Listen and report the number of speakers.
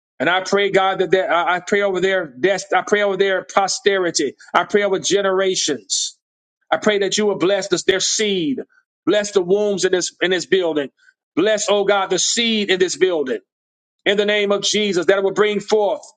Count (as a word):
one